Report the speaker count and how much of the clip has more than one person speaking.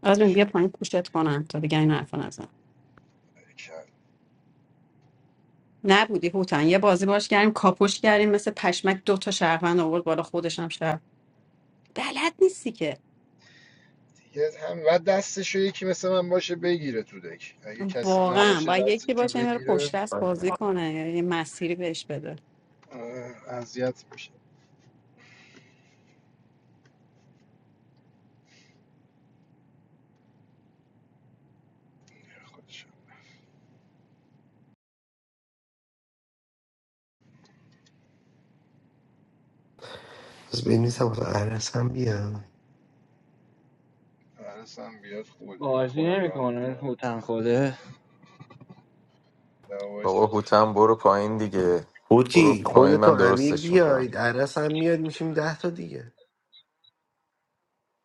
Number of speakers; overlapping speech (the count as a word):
five, about 8%